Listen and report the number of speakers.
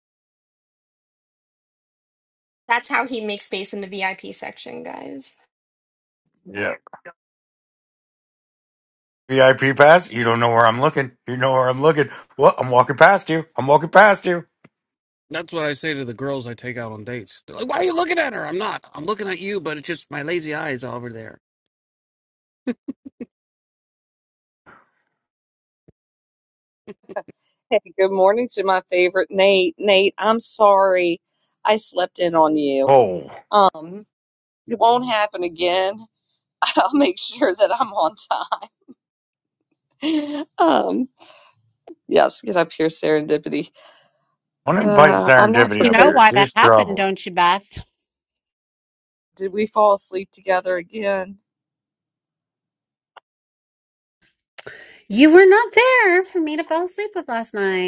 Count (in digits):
5